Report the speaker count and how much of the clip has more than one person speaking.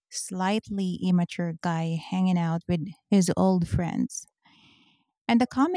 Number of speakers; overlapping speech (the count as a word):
one, no overlap